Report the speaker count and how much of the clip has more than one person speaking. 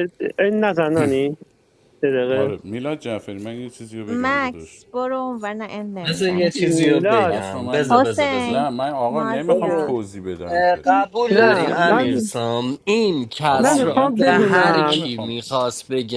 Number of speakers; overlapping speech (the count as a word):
four, about 45%